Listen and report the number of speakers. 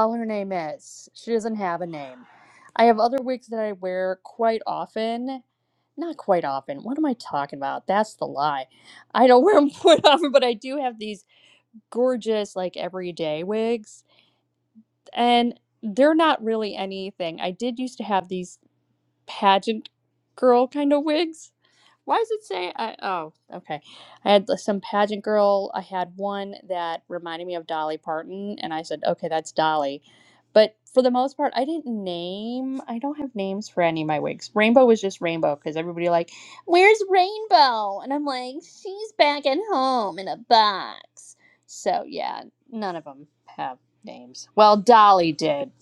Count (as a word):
one